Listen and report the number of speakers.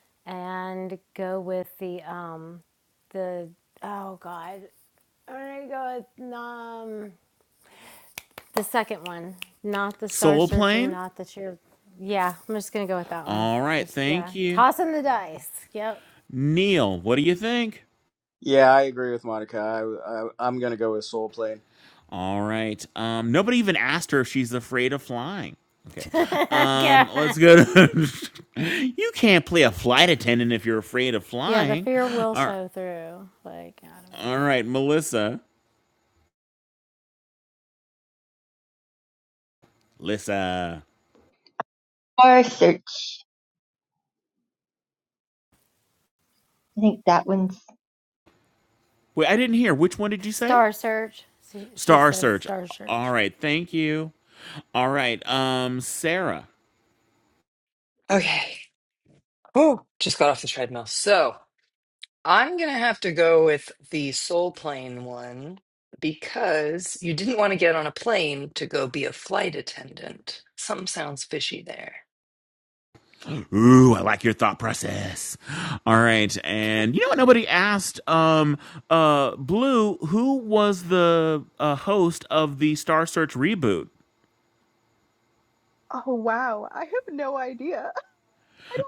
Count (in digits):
6